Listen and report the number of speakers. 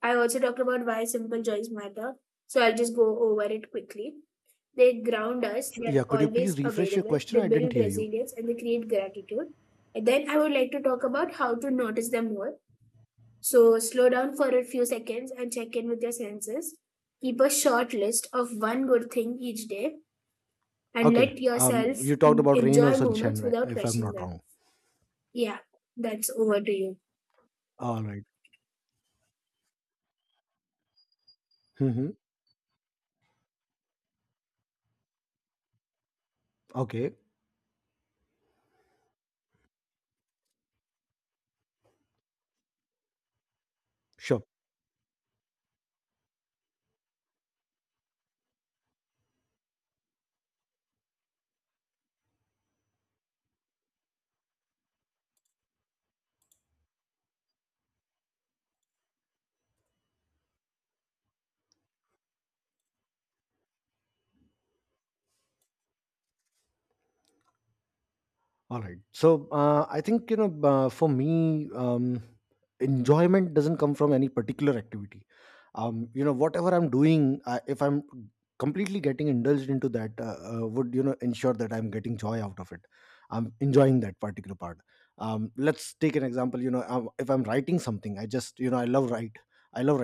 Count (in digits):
2